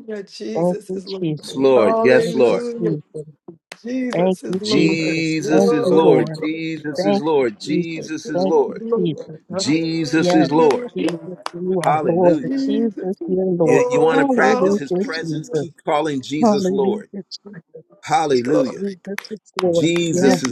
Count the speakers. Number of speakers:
3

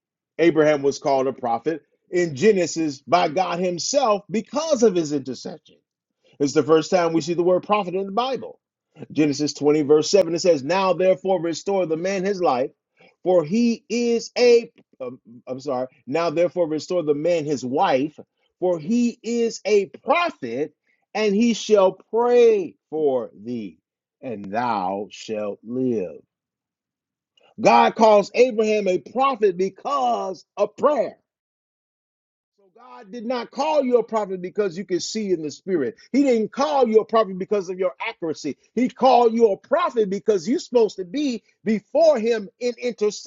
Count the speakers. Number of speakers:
1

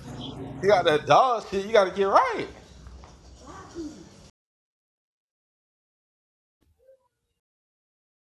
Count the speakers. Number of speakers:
1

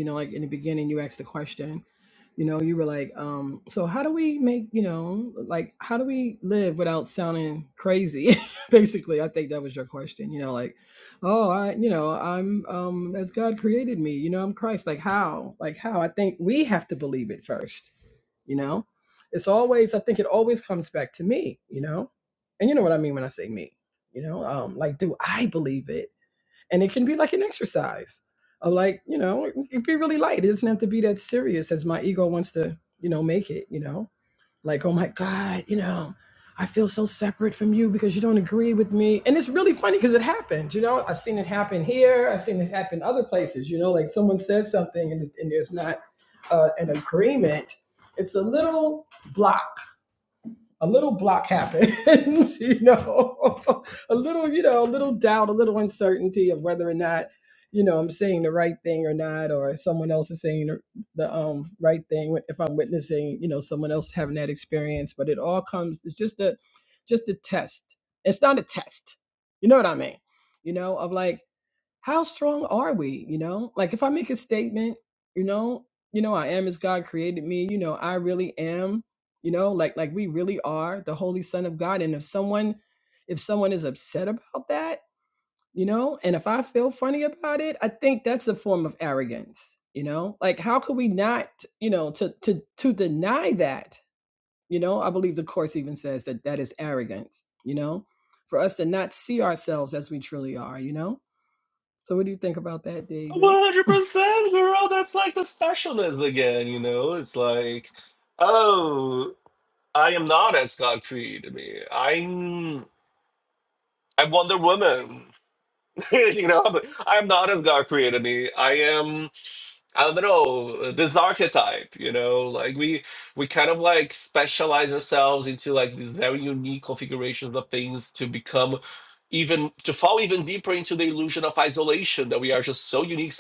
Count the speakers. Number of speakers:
2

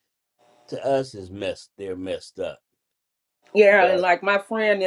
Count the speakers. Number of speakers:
2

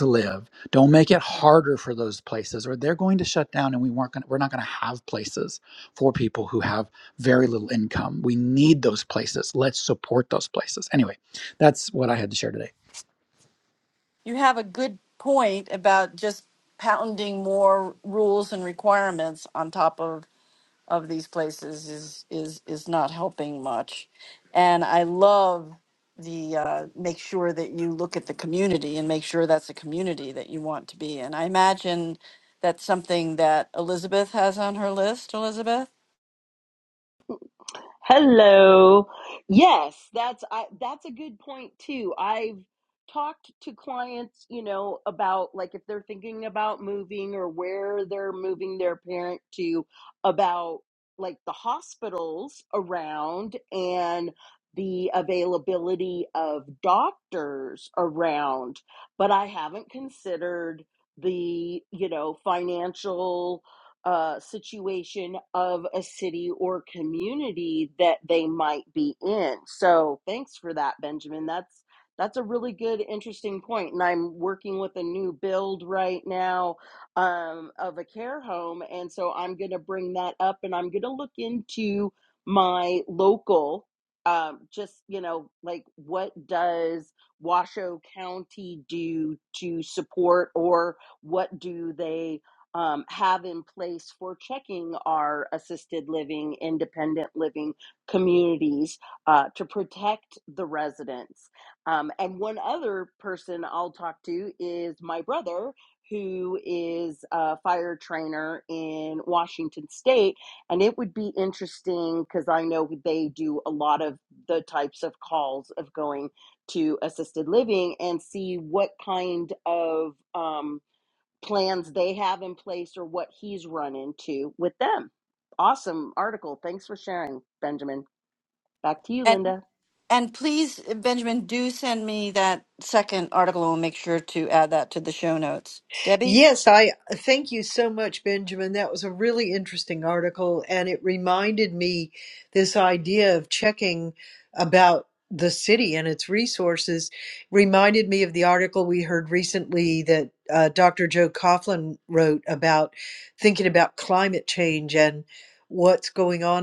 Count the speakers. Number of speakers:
4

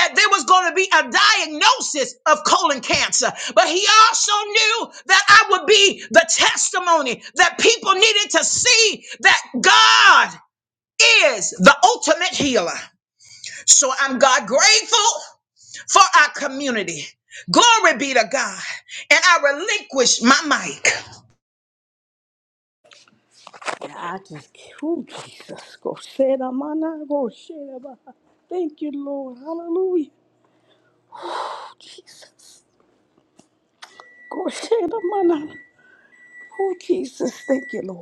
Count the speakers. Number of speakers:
2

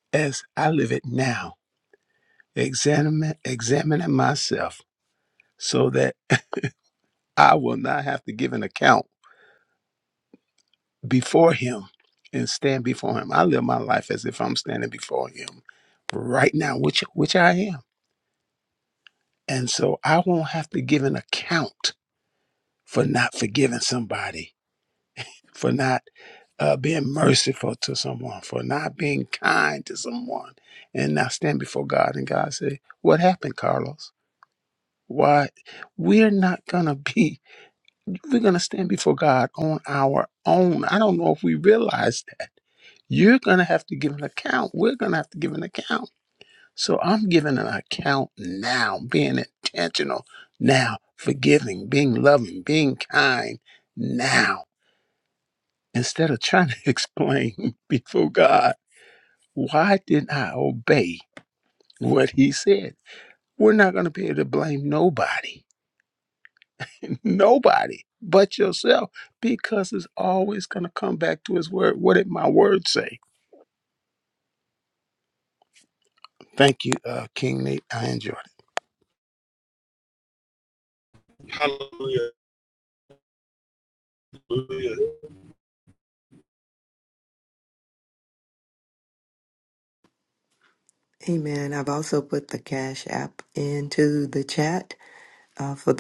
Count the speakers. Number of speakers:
3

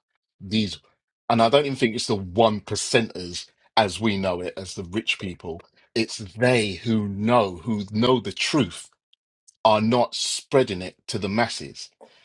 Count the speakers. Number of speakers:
1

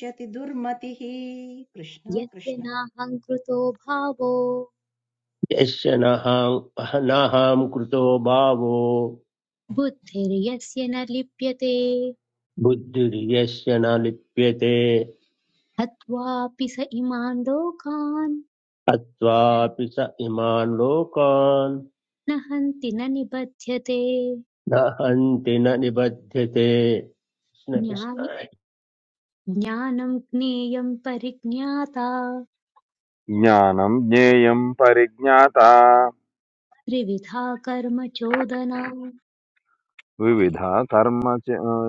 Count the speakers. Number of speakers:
4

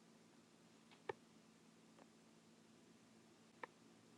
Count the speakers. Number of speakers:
0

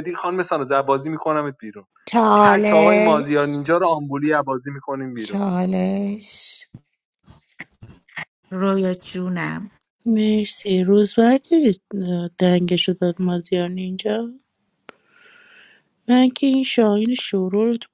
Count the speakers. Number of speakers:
3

